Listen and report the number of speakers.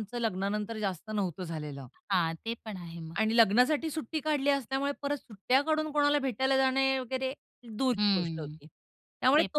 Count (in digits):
2